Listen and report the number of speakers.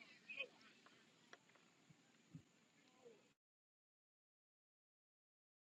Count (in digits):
0